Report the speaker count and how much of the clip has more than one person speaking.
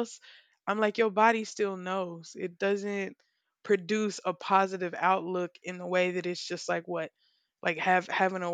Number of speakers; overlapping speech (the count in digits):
1, no overlap